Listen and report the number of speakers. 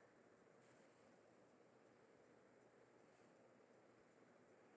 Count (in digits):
0